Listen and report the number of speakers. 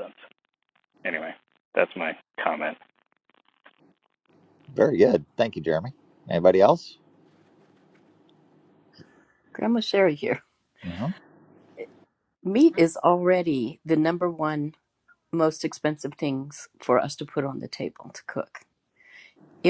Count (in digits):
3